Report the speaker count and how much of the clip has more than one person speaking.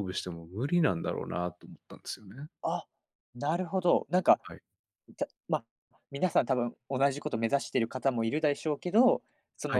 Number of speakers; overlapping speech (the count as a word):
two, about 1%